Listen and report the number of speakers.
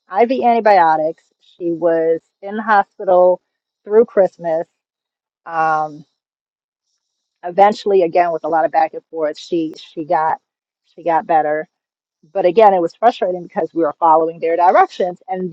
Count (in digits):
1